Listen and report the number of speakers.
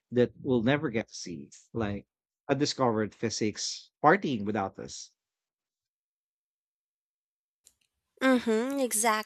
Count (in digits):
2